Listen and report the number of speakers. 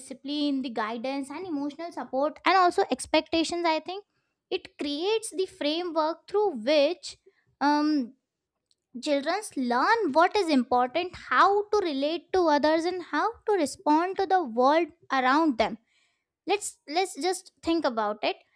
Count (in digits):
1